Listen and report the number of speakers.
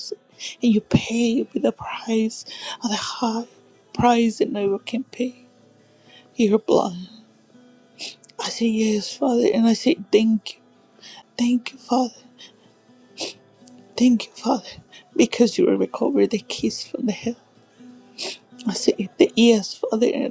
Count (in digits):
1